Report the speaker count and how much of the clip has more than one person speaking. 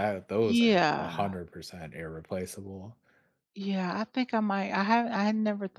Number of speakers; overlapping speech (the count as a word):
two, about 15%